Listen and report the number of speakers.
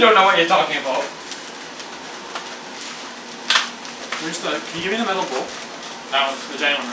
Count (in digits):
2